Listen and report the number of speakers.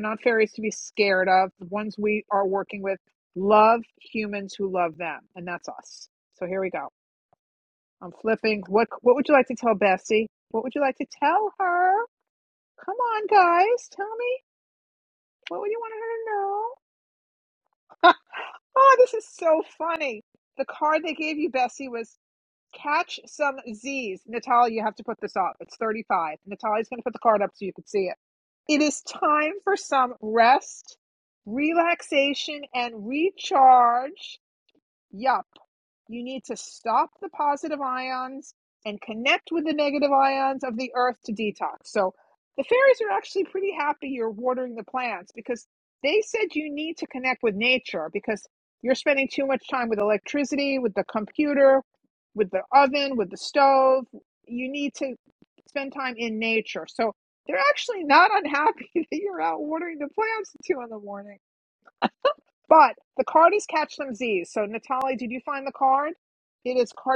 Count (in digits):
1